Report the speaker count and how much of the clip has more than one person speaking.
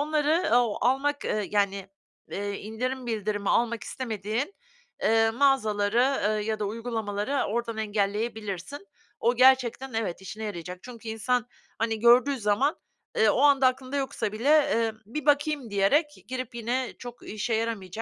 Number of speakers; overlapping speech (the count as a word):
one, no overlap